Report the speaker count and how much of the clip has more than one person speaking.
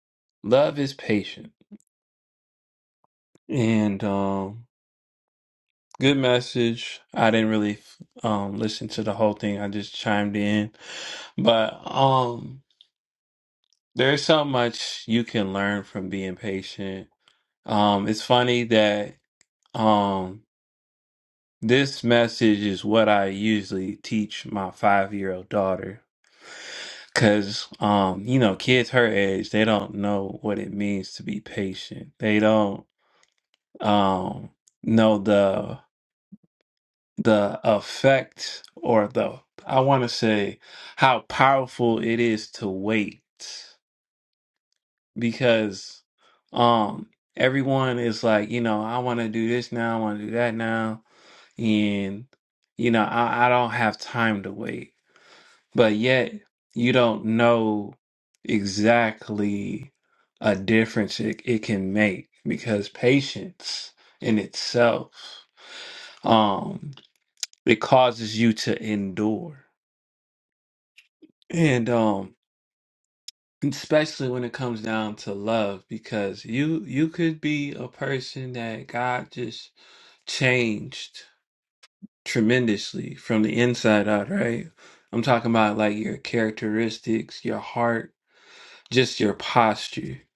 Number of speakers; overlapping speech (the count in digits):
1, no overlap